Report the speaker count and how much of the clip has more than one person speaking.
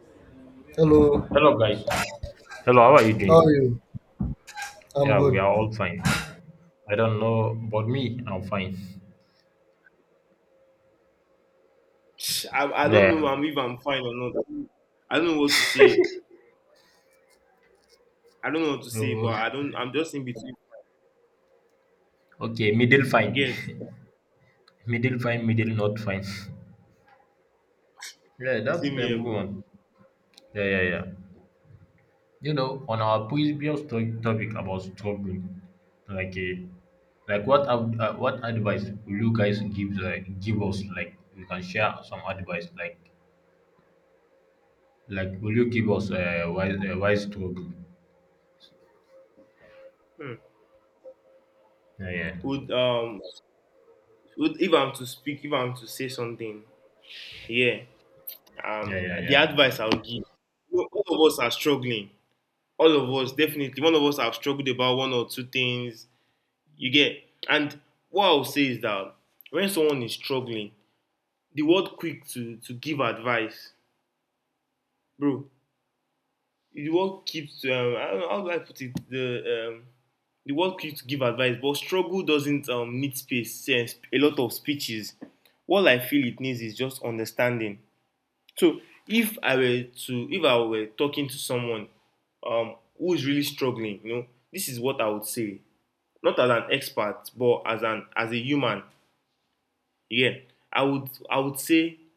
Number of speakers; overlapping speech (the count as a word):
three, about 3%